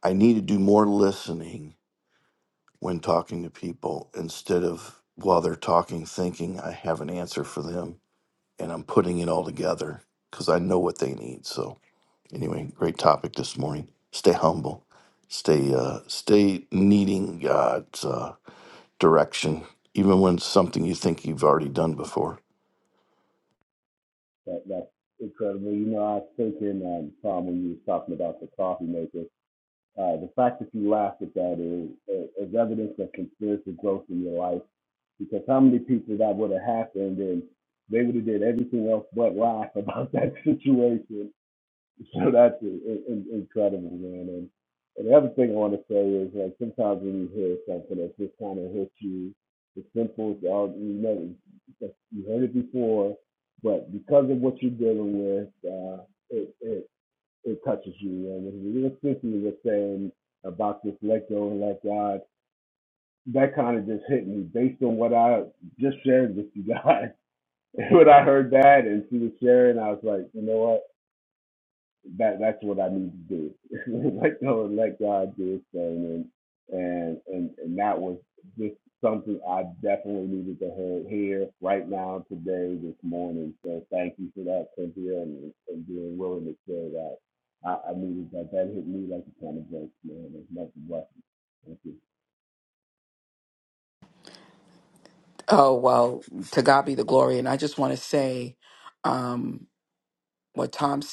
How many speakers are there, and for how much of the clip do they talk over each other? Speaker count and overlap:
3, no overlap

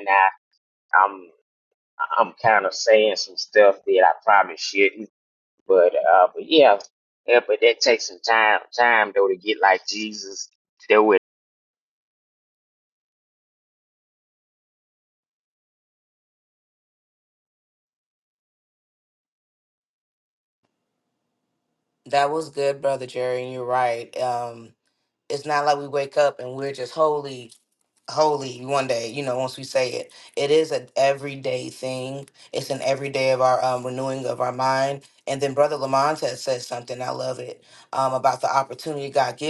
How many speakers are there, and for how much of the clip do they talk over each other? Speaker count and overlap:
2, no overlap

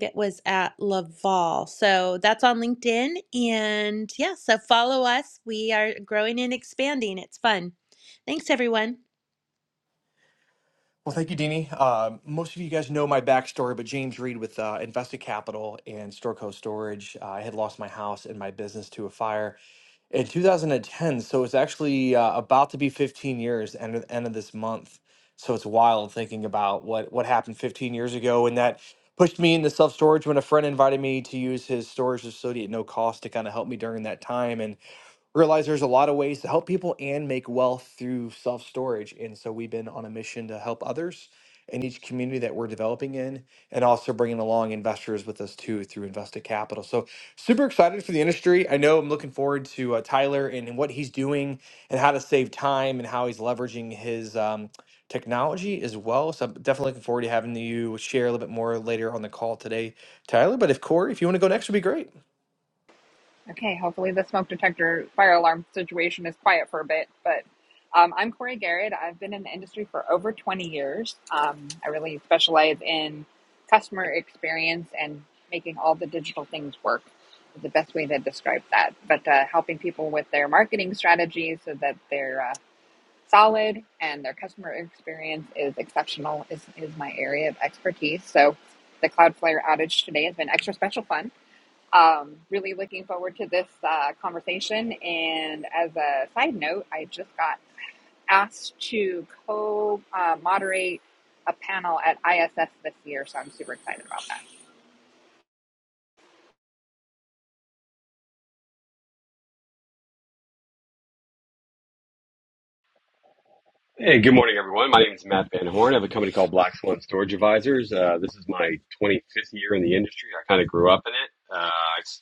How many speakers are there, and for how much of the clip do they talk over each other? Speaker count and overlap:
4, no overlap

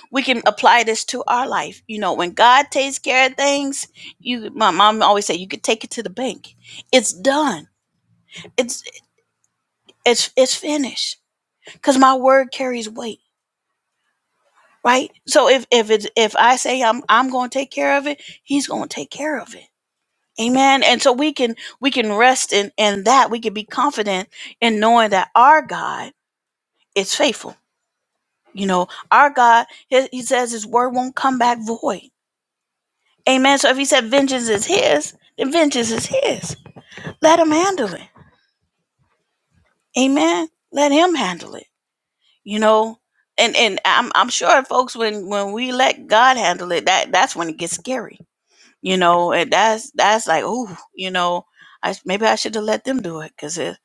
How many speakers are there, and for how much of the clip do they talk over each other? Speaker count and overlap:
1, no overlap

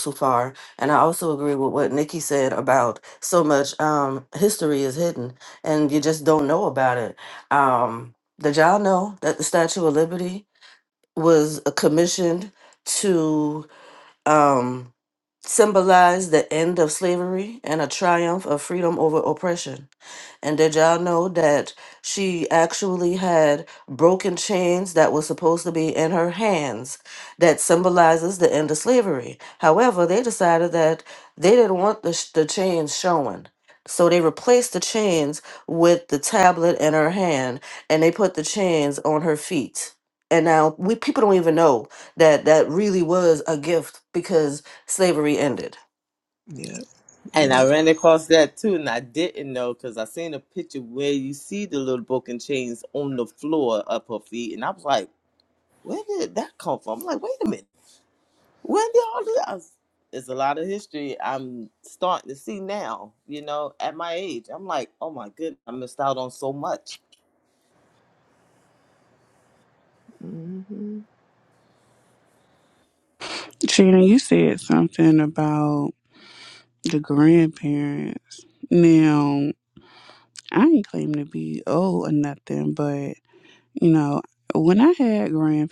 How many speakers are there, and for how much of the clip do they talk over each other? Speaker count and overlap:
4, under 1%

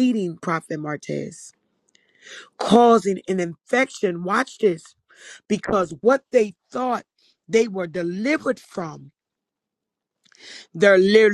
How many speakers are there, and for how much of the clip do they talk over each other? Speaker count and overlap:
1, no overlap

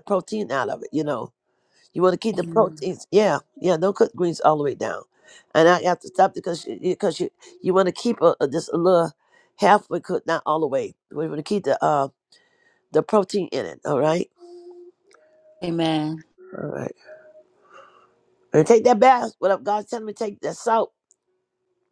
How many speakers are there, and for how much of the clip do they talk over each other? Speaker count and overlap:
2, about 2%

